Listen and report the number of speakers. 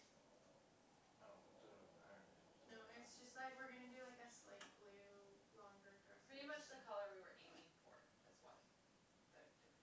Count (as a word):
three